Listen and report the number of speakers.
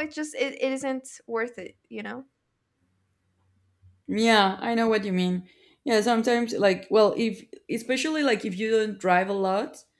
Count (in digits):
2